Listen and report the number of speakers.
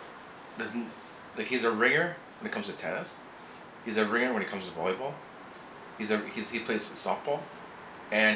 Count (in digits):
1